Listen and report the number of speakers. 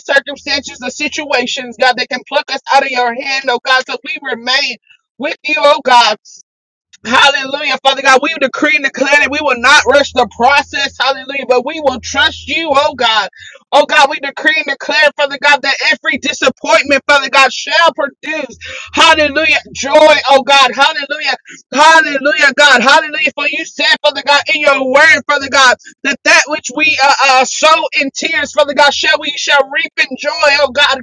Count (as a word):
one